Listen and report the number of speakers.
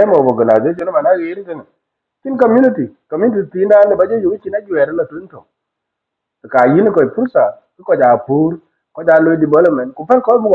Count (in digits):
1